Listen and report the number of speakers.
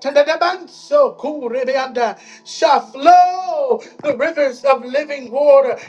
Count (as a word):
one